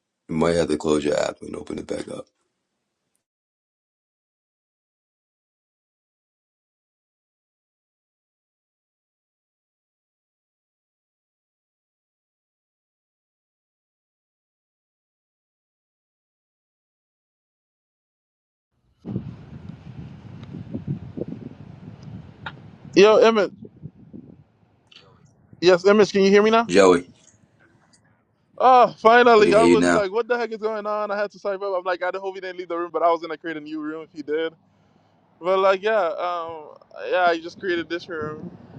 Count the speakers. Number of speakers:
2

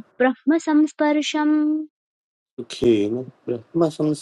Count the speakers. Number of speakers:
2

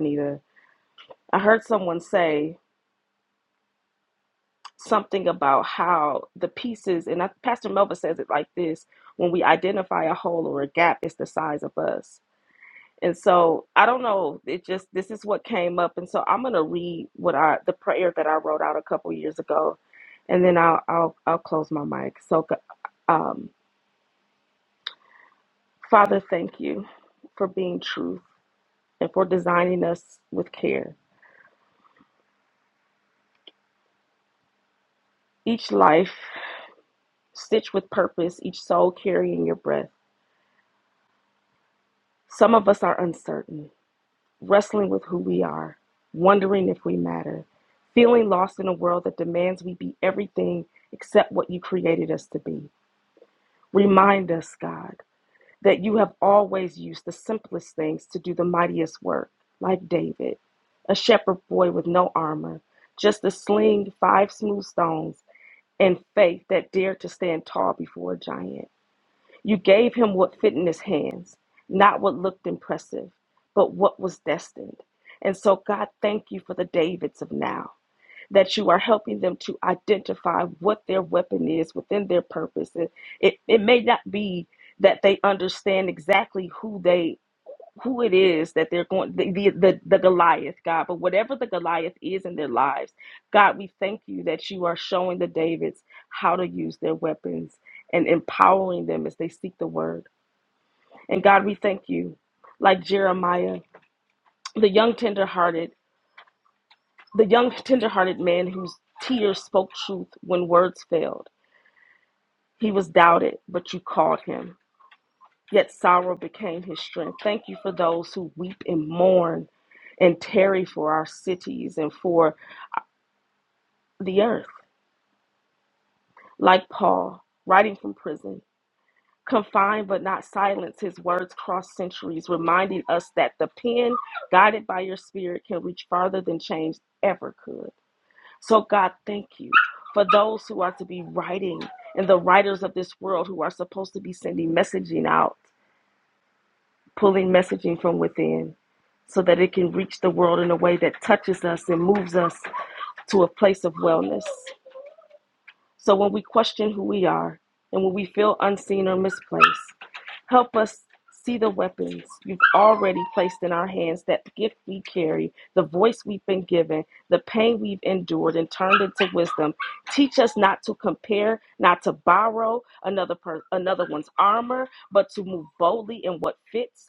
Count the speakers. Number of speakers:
1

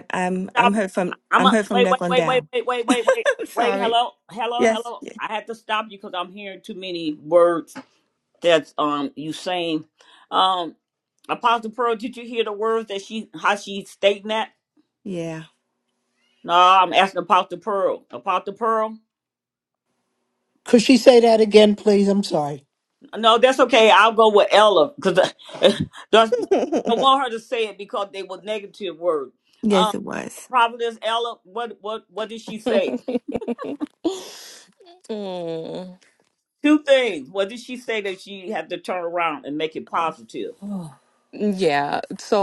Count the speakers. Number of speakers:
4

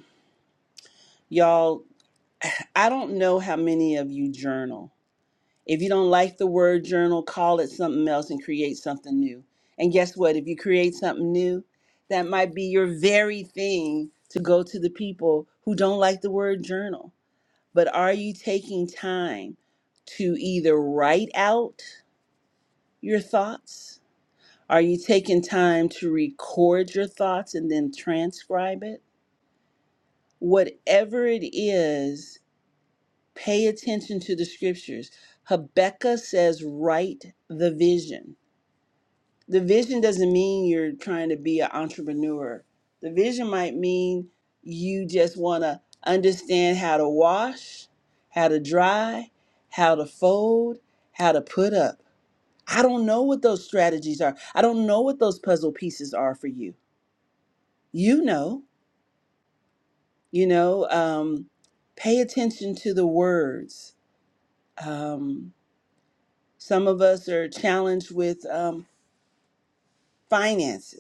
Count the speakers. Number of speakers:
1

